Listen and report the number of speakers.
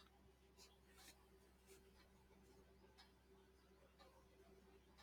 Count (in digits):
0